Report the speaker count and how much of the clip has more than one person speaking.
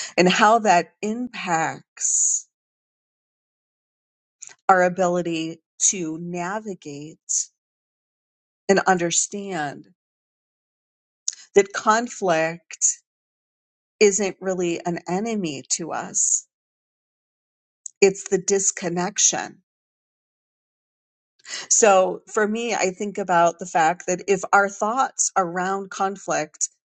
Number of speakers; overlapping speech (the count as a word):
one, no overlap